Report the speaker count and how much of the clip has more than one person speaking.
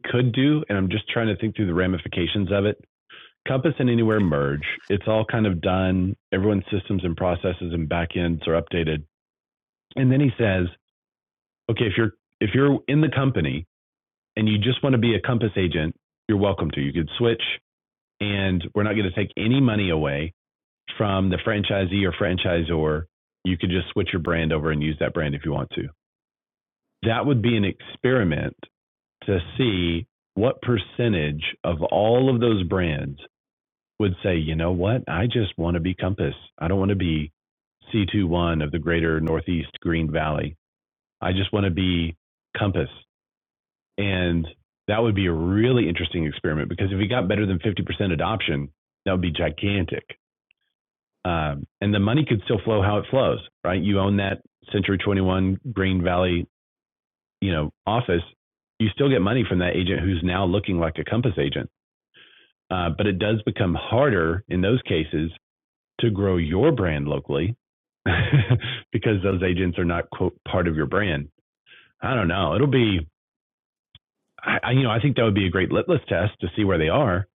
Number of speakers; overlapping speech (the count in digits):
1, no overlap